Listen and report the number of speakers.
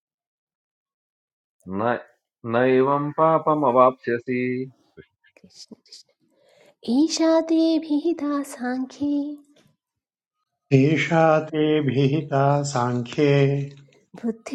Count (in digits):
3